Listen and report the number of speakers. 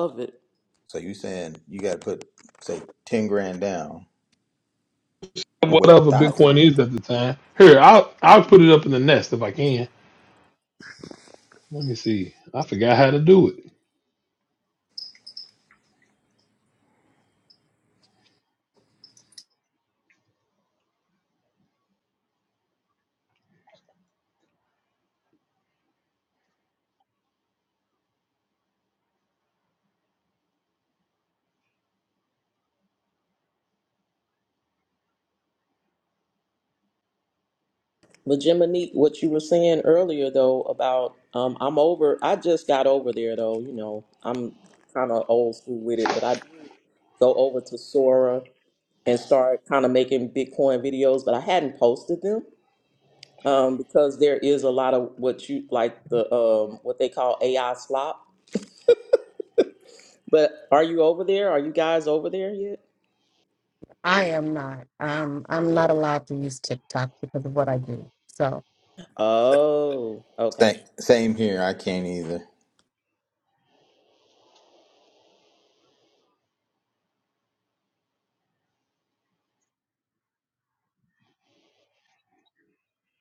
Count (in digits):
4